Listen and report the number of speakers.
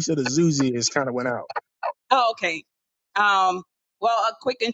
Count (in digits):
2